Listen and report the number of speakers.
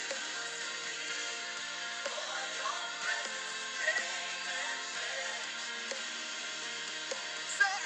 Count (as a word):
zero